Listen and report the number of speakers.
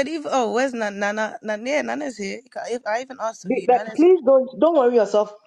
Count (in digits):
2